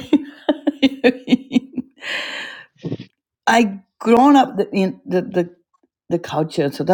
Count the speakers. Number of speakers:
one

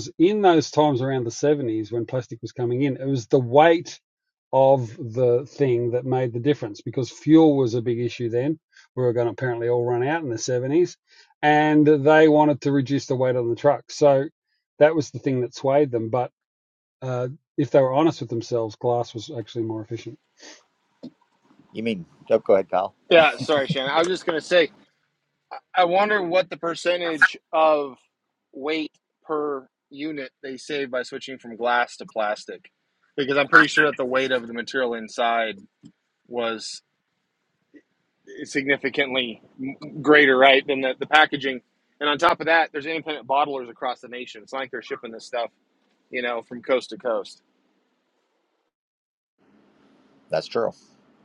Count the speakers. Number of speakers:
three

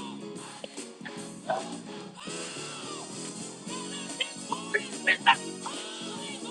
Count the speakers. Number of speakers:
zero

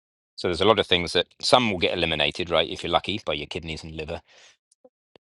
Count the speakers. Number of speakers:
one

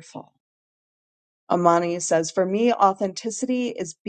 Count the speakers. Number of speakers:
one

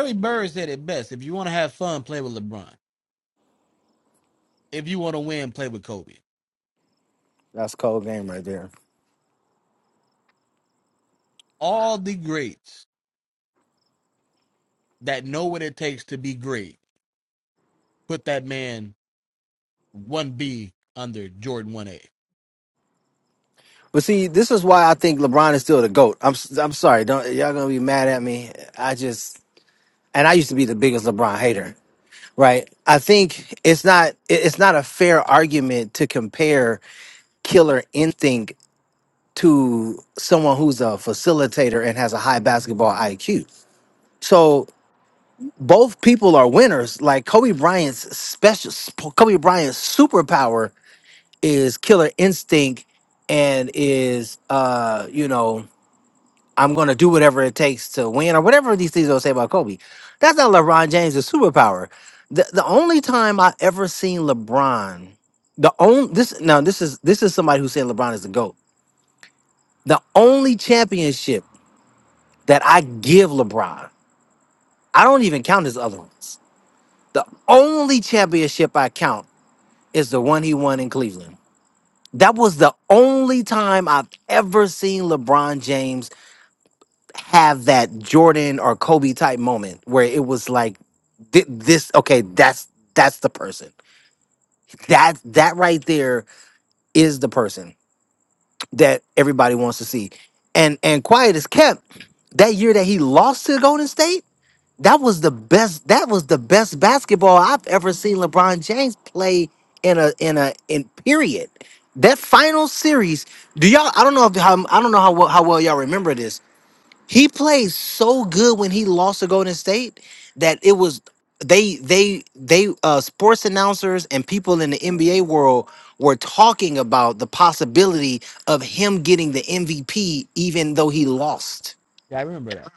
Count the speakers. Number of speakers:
two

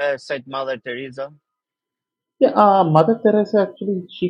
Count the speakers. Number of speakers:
two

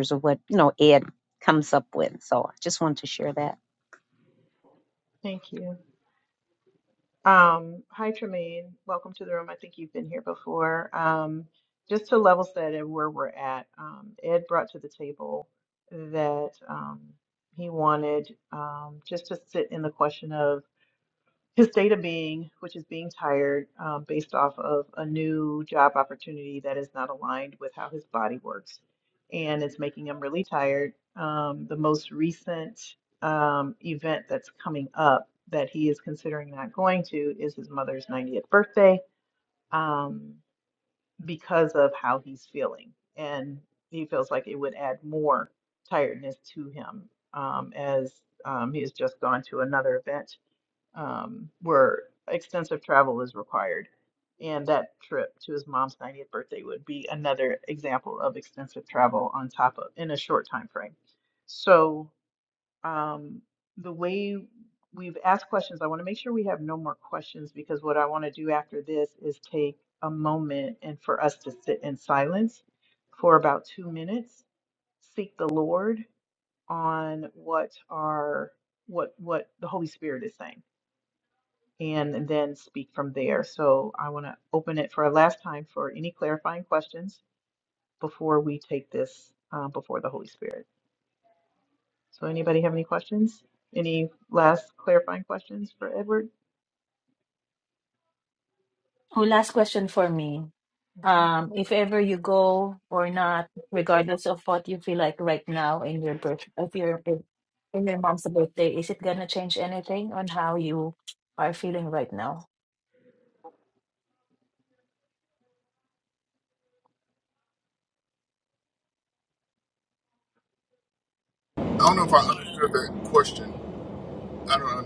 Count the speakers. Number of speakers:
four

